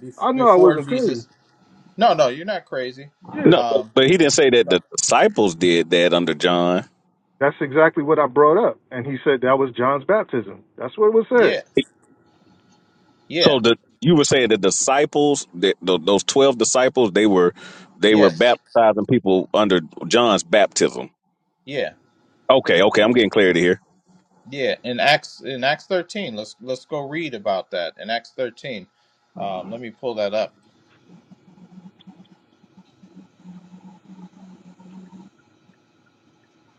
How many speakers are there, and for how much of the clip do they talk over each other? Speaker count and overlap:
three, about 6%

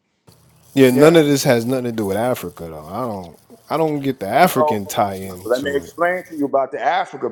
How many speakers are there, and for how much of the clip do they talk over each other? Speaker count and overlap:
two, about 16%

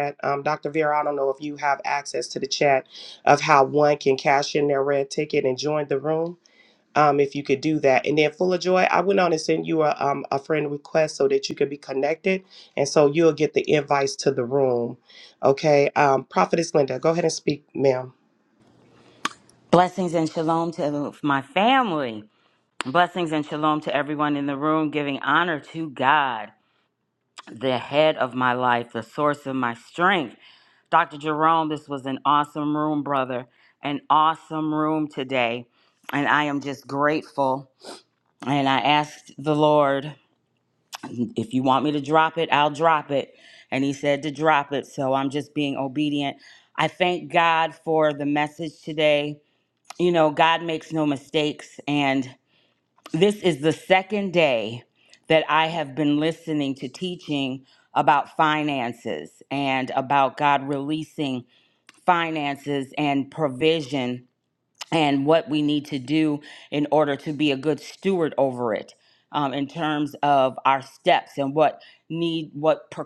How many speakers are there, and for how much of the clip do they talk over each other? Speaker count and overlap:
two, no overlap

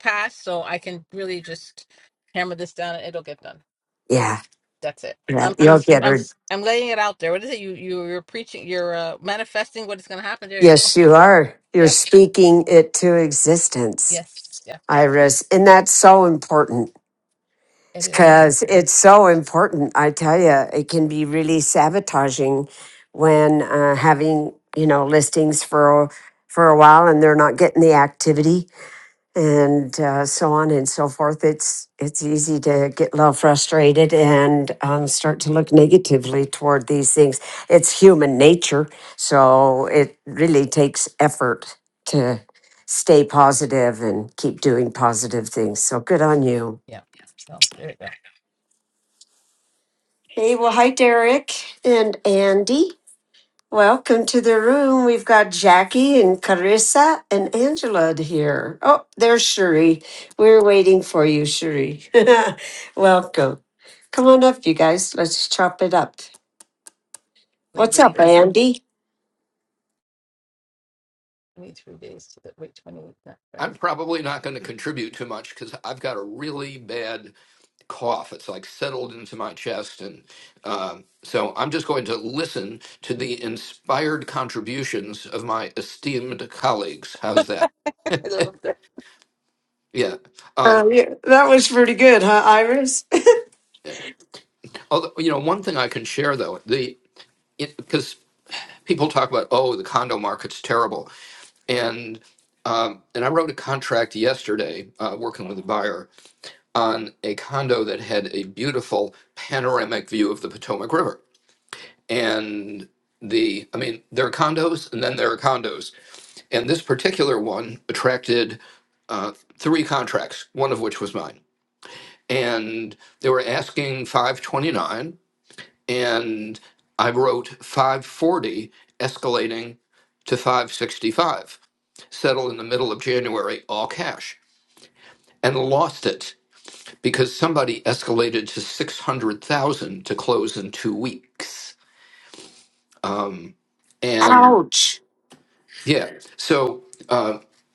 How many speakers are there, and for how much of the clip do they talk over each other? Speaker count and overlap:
three, about 2%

